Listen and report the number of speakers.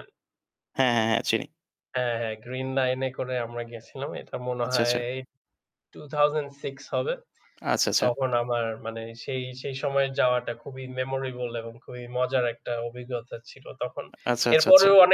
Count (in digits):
2